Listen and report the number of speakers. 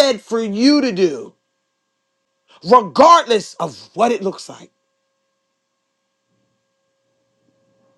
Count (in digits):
1